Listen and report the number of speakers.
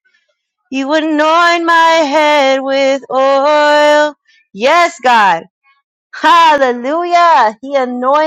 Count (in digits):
1